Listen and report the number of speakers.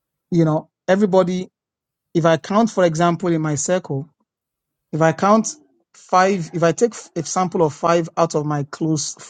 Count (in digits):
1